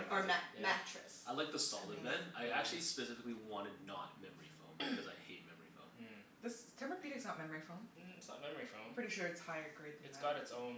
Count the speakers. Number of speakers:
four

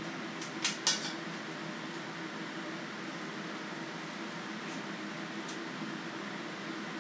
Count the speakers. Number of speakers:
zero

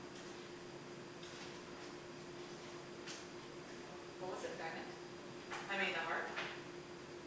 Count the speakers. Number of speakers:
one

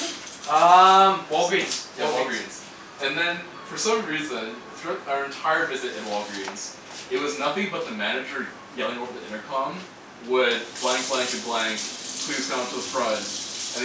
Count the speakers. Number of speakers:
two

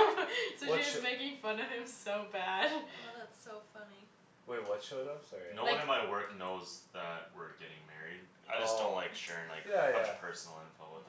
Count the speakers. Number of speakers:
four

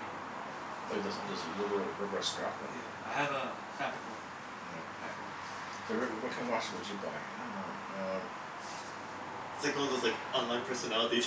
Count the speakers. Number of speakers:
three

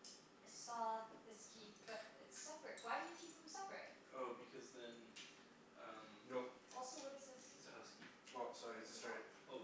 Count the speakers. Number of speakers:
three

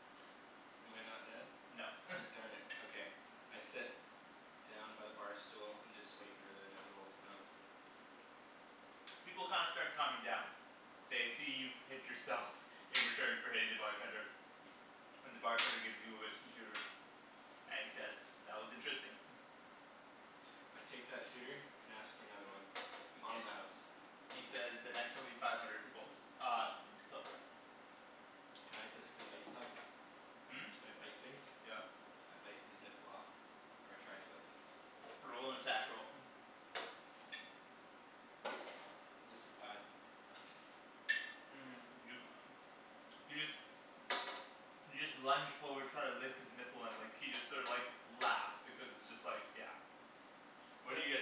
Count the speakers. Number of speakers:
two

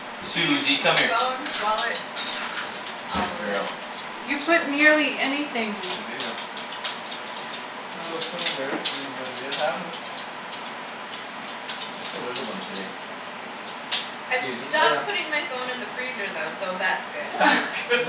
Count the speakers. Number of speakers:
four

